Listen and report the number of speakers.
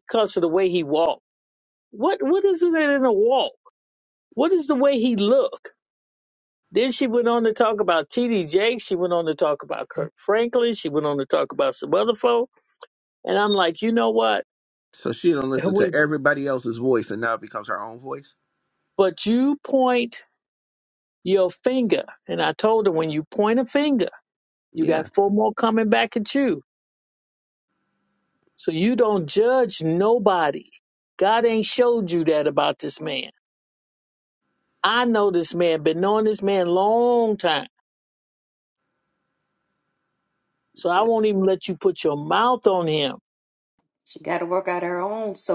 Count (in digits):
3